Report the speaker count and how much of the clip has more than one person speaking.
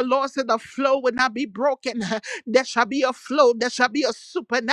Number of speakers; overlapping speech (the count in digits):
1, no overlap